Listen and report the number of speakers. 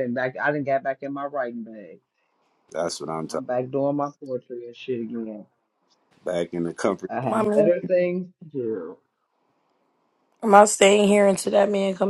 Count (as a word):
three